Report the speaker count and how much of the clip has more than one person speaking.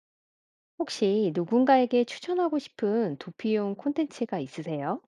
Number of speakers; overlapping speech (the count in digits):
1, no overlap